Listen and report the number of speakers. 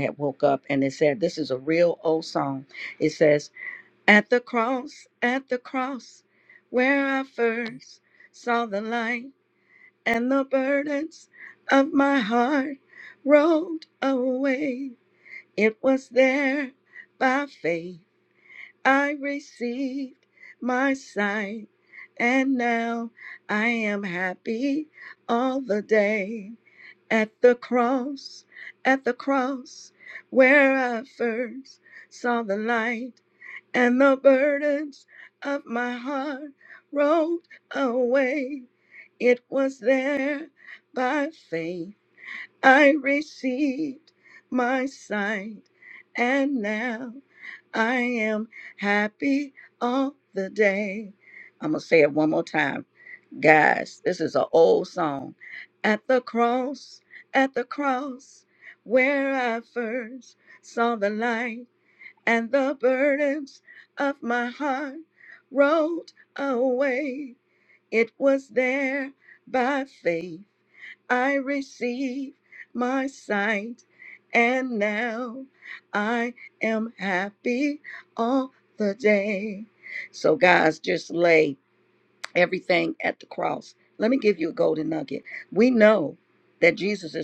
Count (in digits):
1